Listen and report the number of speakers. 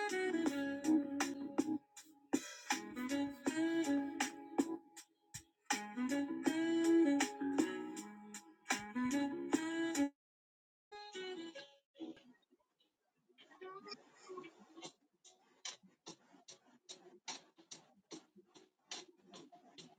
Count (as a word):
zero